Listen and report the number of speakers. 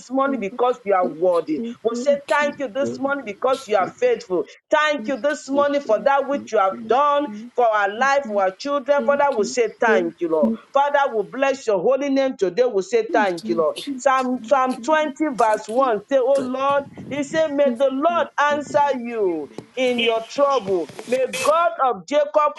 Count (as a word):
one